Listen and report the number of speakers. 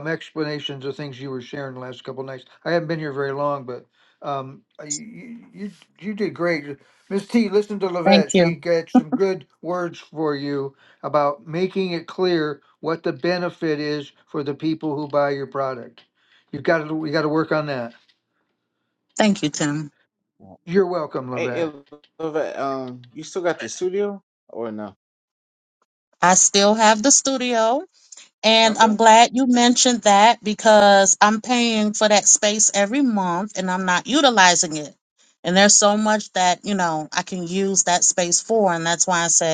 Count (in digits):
3